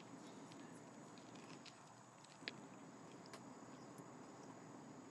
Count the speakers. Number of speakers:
zero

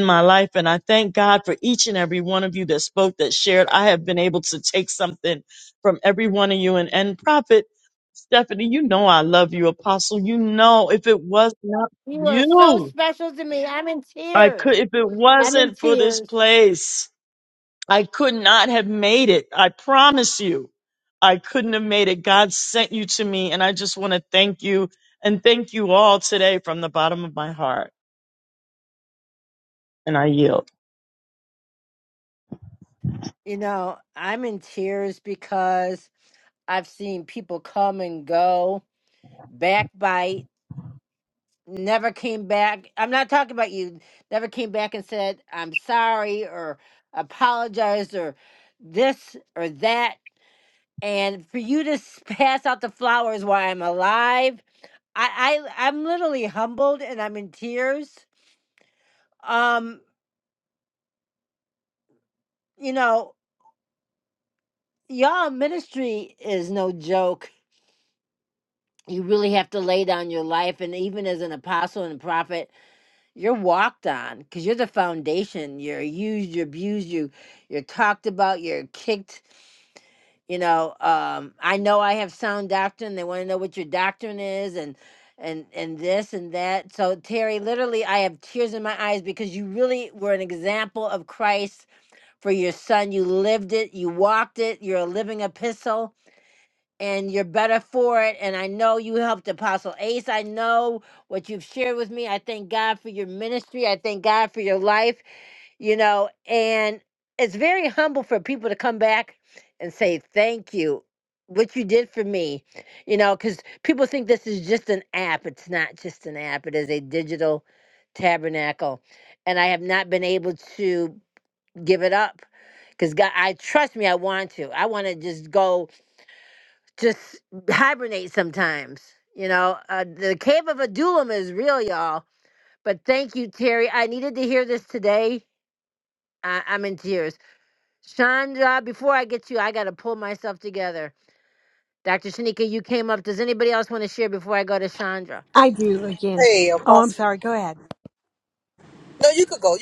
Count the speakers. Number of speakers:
four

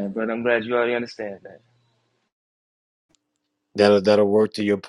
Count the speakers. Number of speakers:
two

